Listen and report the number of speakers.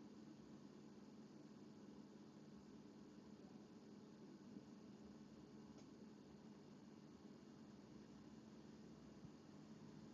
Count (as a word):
zero